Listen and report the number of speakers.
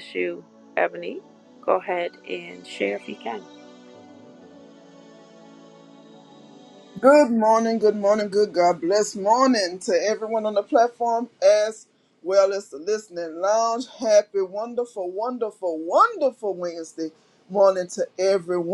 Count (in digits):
2